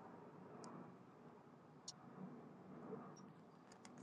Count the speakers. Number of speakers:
0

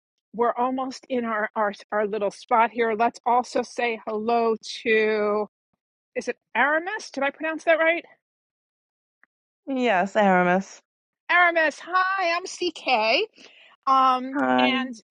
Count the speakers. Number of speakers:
2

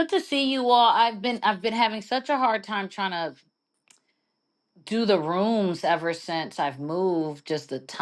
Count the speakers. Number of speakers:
1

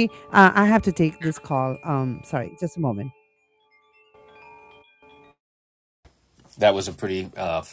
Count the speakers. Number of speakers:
2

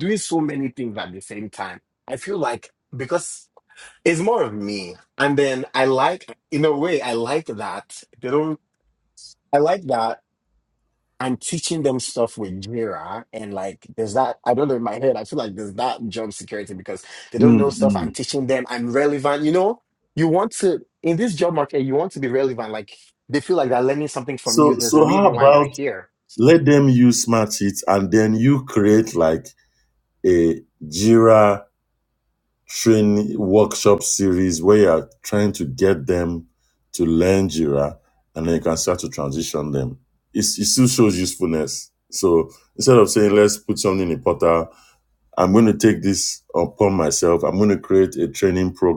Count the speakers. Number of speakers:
2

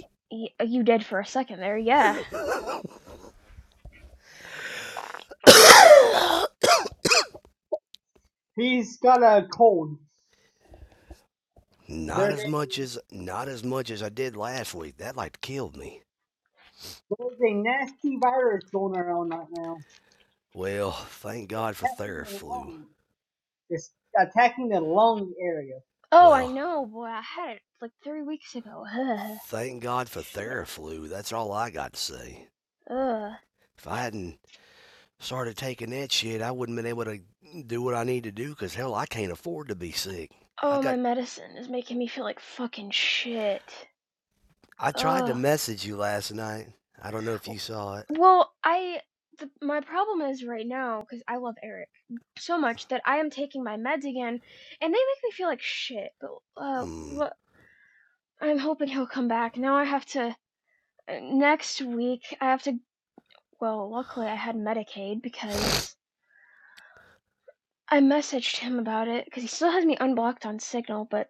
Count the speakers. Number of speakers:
3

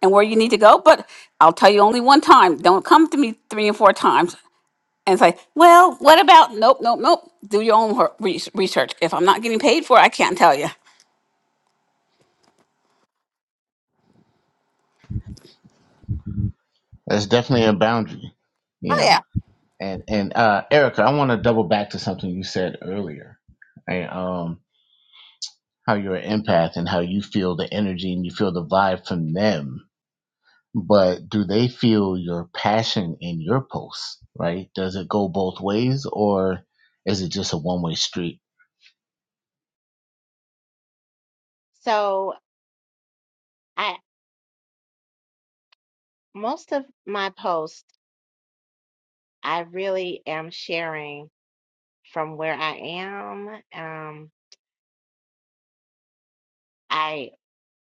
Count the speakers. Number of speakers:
3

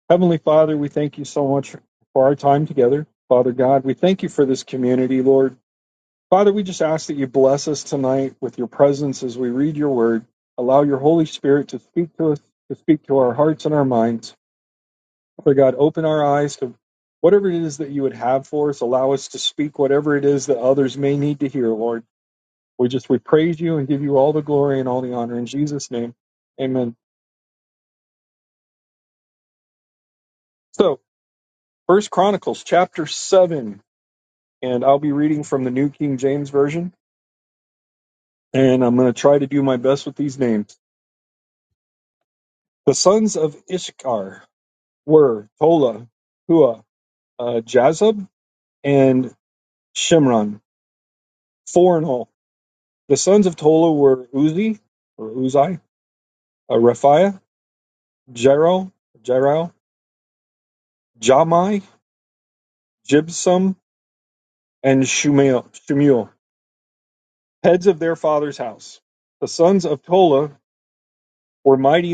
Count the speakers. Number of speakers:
1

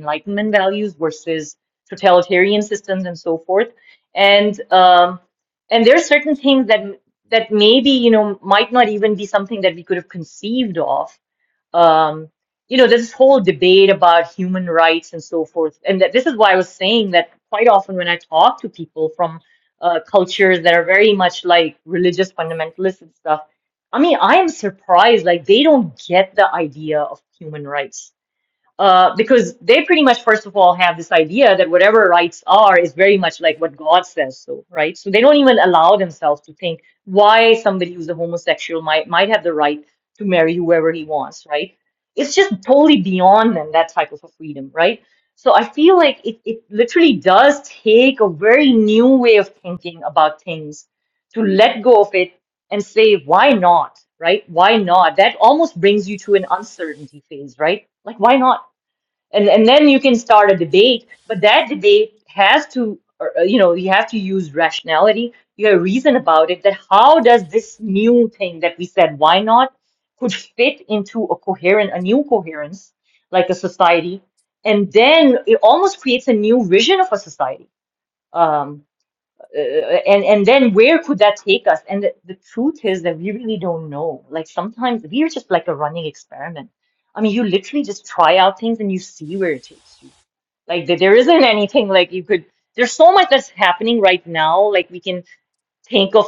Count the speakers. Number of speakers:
1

